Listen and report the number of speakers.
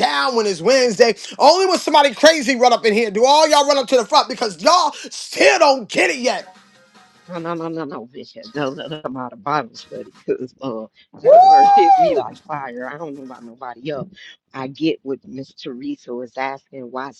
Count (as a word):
two